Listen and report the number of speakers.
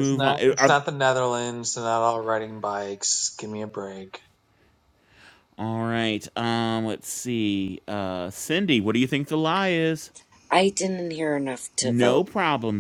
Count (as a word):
three